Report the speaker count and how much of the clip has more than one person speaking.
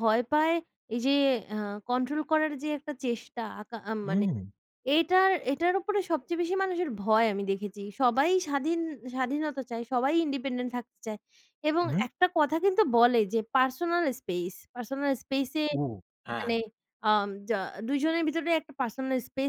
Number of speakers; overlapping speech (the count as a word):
two, about 3%